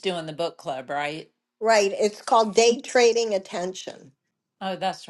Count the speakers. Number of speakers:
two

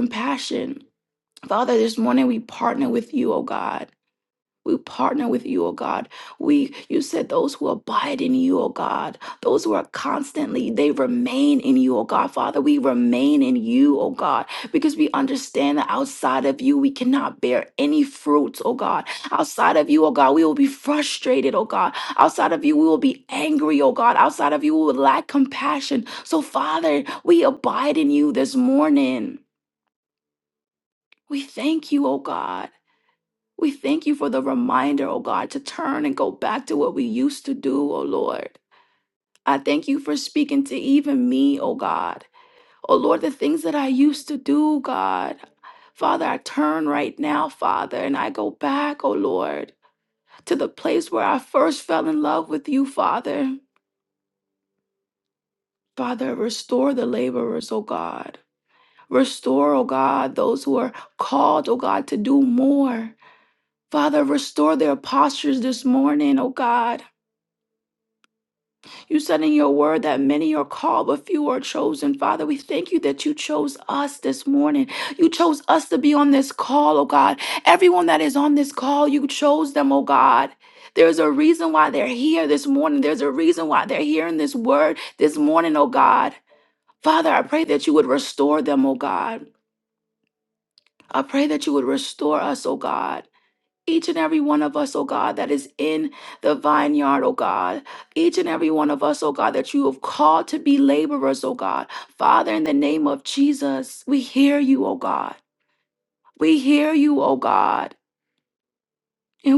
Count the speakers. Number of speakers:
one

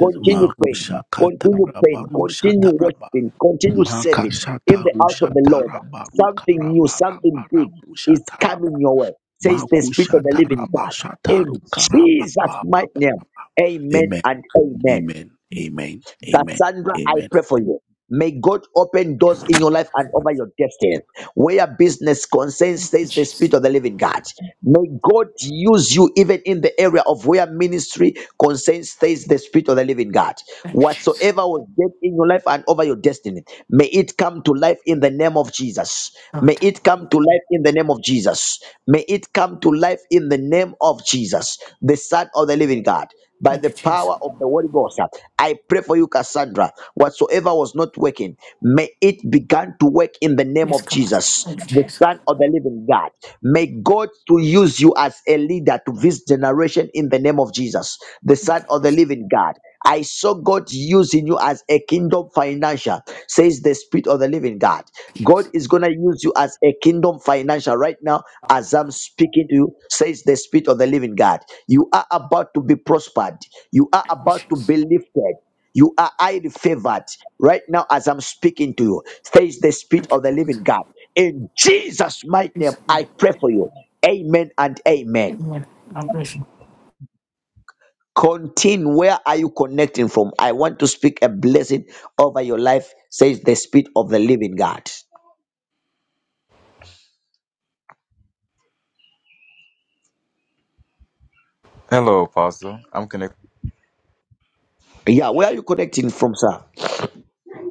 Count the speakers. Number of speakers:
four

